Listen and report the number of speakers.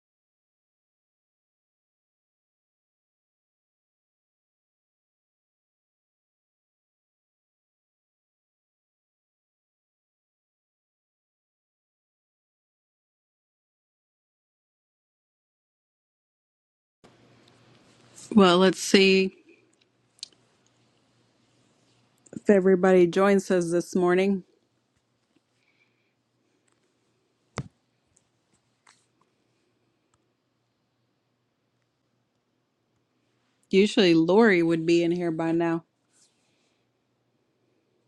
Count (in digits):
1